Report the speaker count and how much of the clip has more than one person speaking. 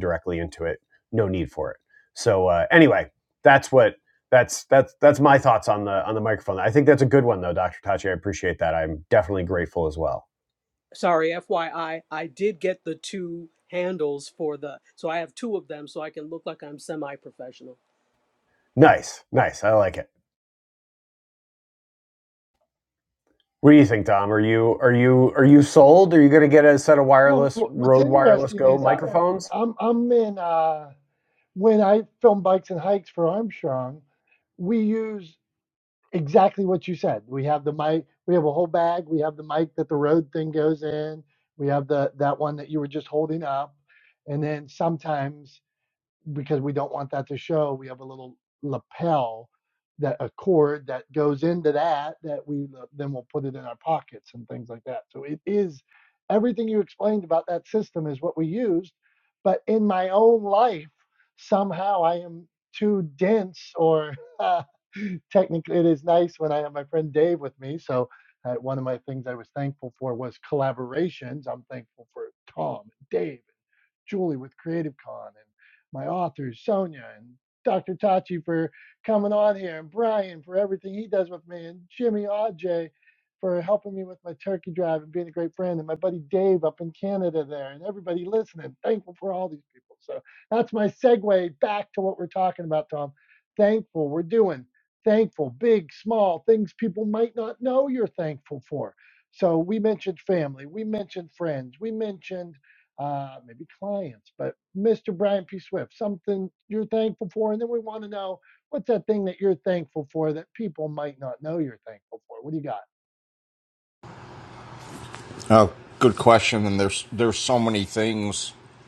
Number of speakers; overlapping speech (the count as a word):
four, about 1%